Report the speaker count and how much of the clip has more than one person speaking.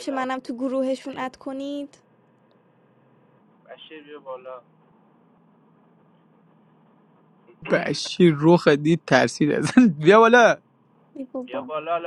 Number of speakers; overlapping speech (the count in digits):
3, about 6%